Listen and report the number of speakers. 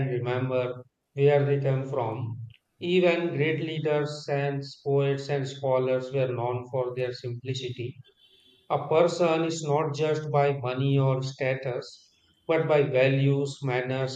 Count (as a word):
one